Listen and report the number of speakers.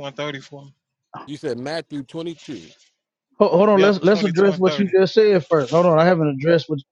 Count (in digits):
3